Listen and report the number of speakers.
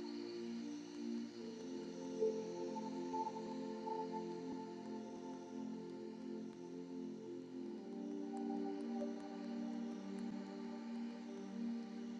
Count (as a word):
zero